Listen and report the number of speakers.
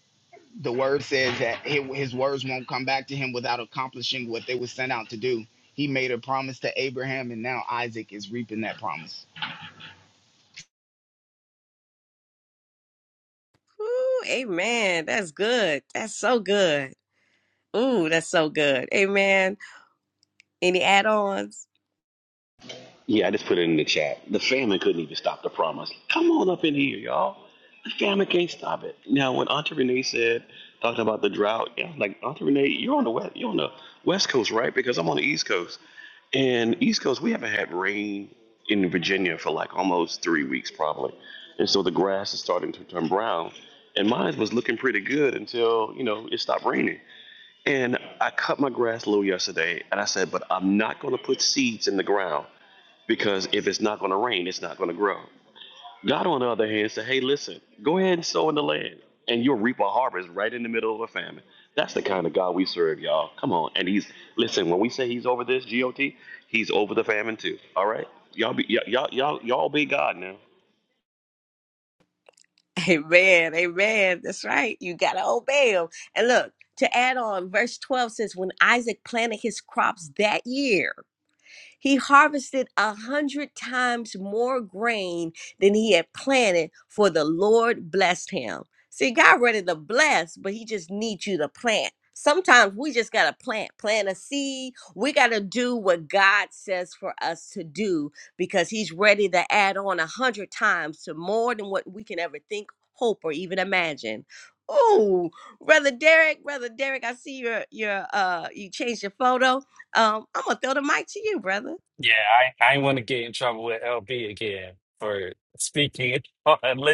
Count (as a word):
four